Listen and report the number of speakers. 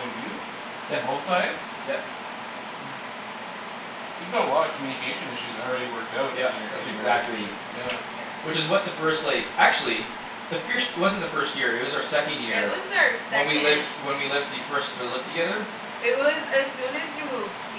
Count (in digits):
3